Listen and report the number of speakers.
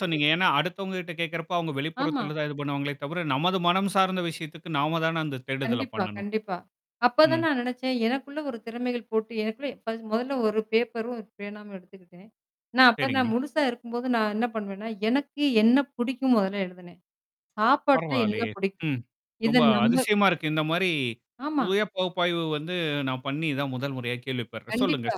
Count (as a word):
two